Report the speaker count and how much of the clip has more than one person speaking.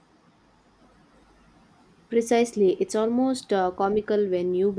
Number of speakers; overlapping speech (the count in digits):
1, no overlap